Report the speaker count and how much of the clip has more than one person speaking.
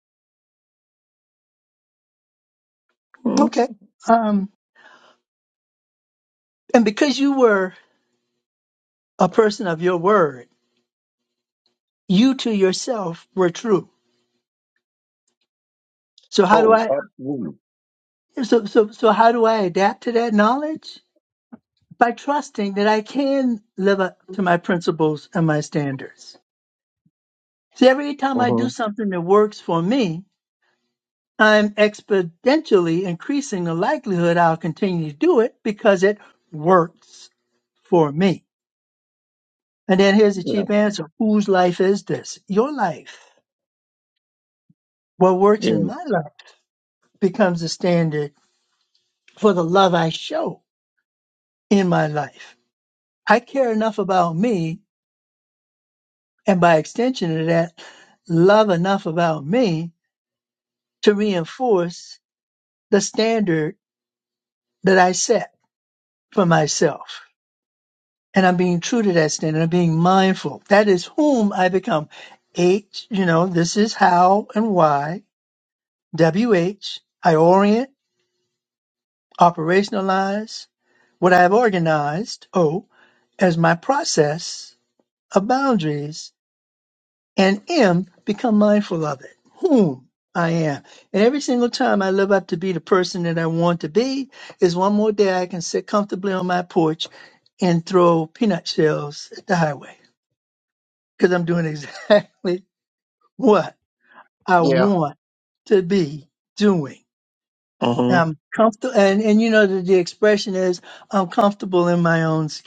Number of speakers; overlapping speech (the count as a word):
two, about 2%